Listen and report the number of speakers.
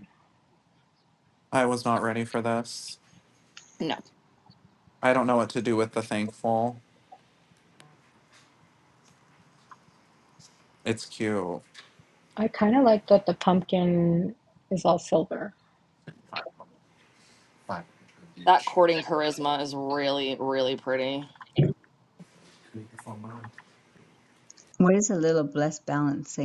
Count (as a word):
four